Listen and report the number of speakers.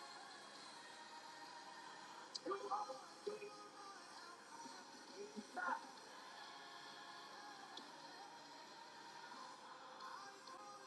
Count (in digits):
0